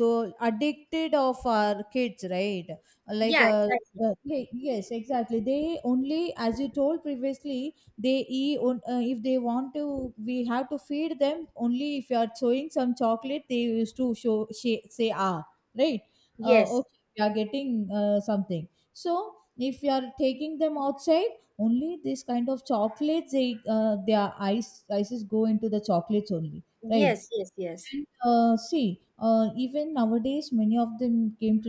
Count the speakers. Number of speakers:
2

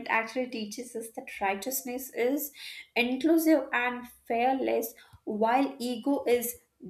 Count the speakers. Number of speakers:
1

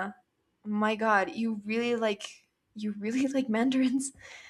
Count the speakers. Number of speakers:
1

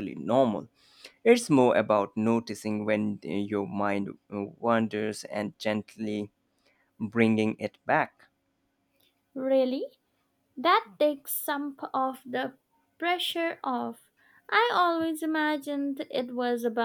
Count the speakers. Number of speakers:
2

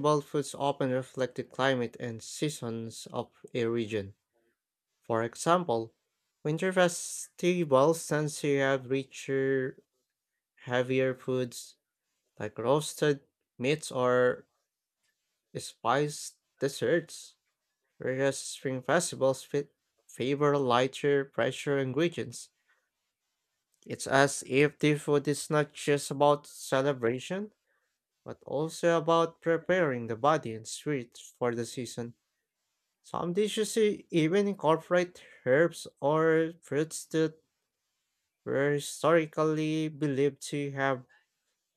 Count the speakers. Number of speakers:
1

